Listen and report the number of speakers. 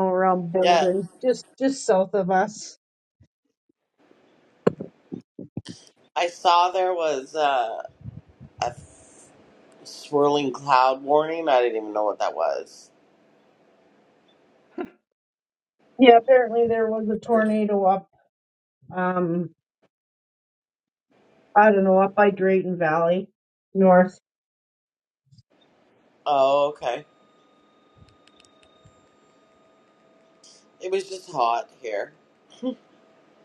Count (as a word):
two